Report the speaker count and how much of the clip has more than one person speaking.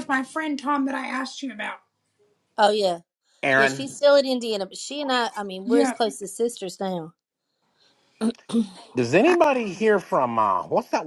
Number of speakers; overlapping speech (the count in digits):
3, about 6%